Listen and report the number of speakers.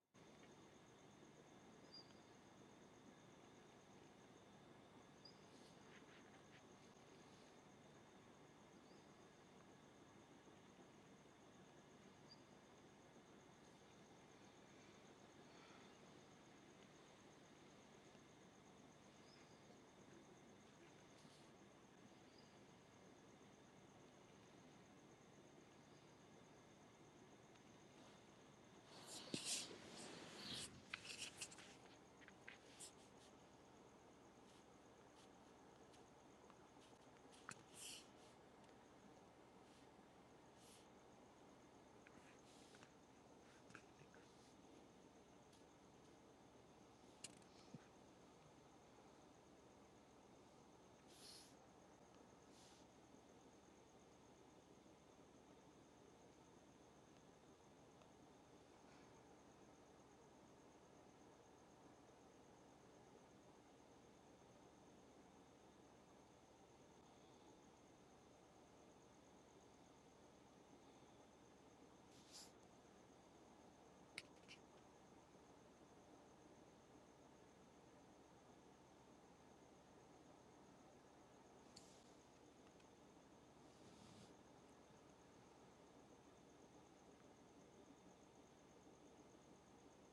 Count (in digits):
0